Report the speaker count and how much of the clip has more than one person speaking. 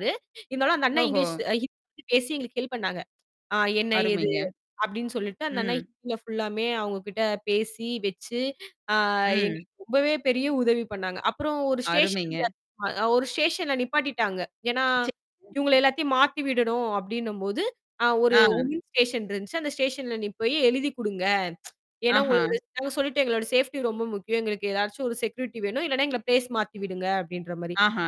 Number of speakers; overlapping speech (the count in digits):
2, about 8%